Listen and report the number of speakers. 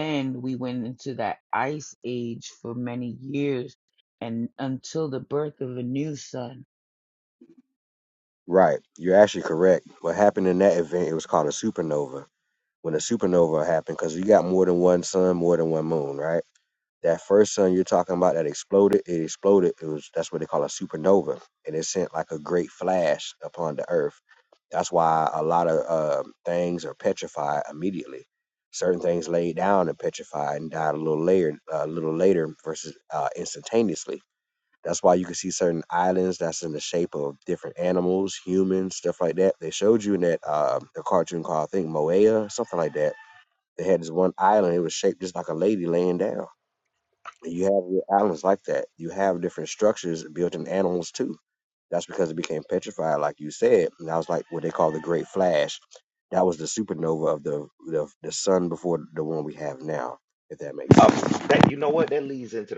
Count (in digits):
3